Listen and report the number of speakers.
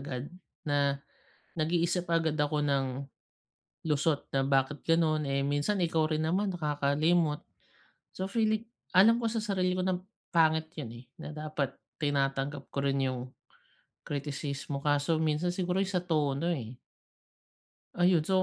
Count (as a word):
one